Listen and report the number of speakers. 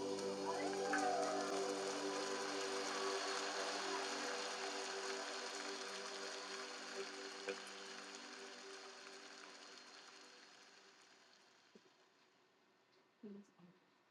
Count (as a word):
zero